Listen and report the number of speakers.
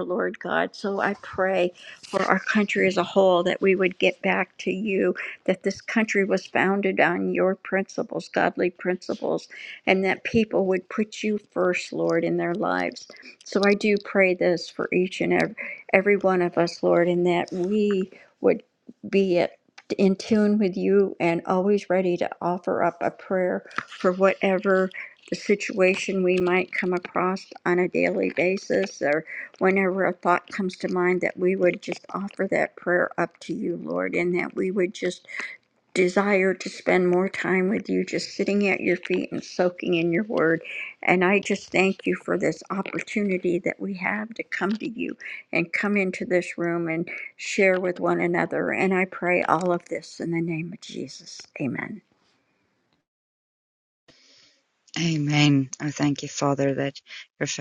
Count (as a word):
two